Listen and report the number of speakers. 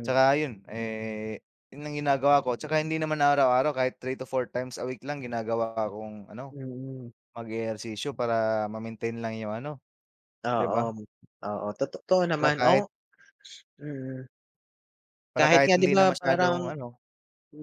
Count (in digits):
2